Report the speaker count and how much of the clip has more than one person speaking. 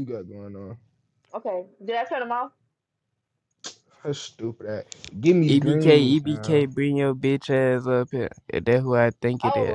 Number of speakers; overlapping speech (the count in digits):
3, about 16%